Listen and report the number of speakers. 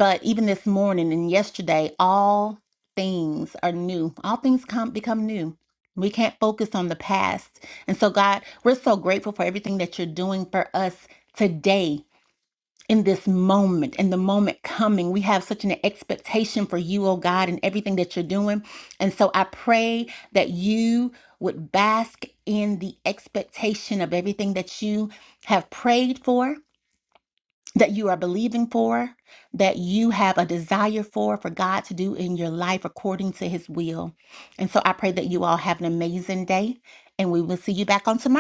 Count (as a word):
one